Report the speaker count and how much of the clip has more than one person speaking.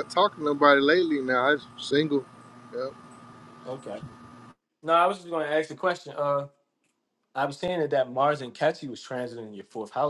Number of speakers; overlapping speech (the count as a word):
two, no overlap